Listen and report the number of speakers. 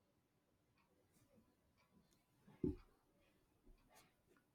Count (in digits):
0